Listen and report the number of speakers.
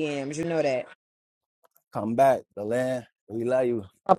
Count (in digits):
2